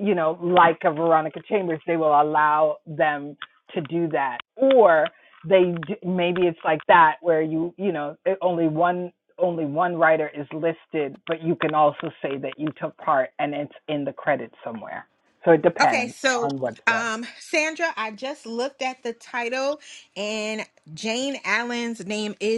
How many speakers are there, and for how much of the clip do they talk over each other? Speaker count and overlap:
2, about 4%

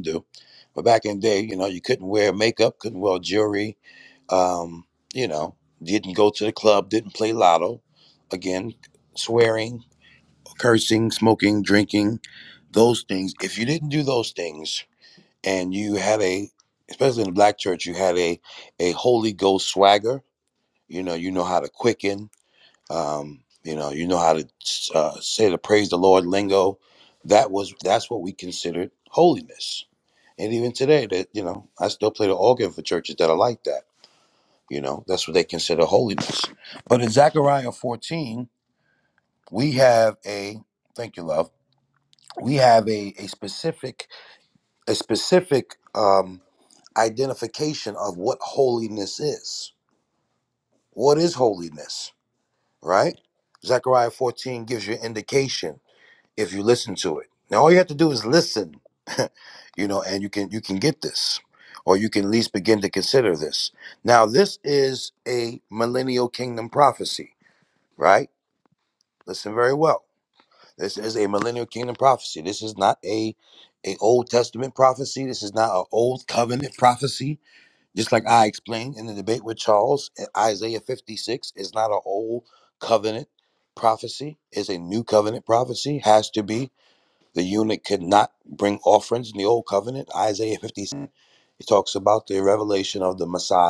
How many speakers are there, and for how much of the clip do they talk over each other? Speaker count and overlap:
1, no overlap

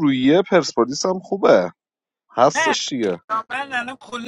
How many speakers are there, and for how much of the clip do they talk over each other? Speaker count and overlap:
2, about 15%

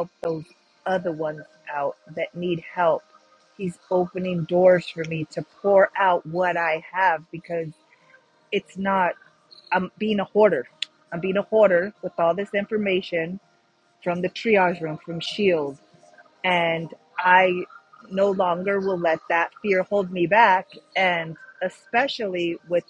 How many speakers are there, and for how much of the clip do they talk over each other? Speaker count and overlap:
1, no overlap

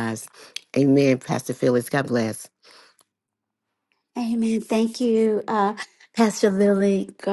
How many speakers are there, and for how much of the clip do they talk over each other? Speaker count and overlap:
2, no overlap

